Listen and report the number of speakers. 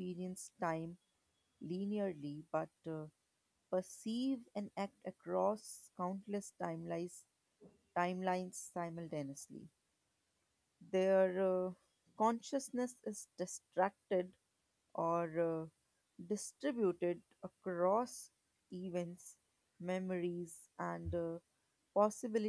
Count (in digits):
1